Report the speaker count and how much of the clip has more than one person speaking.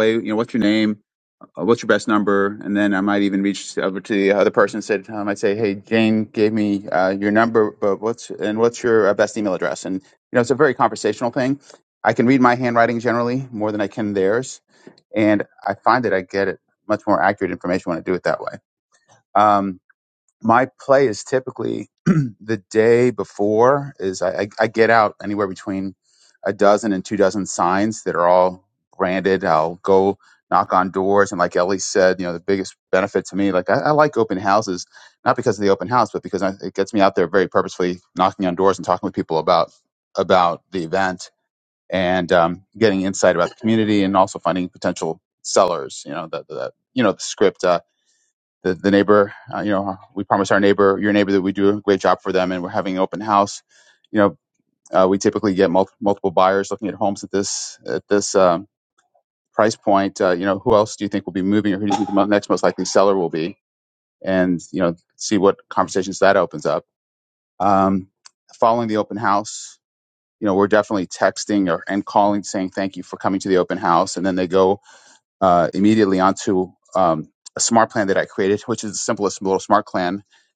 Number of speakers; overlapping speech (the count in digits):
1, no overlap